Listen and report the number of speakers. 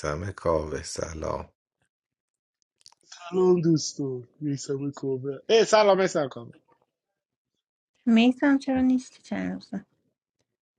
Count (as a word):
three